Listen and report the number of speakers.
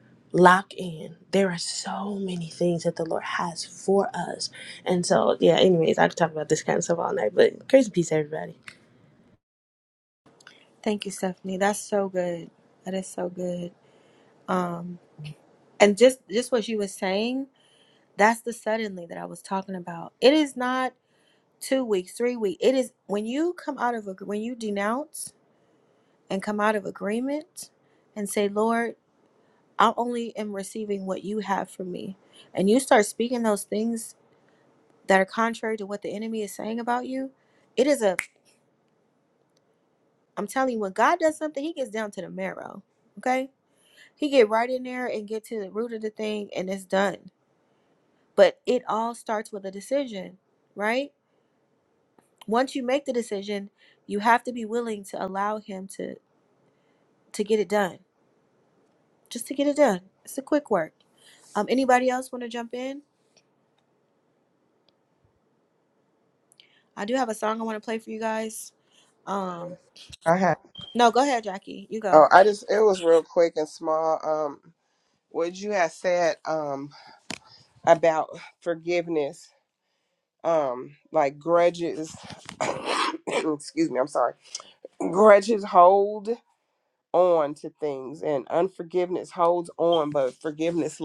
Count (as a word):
three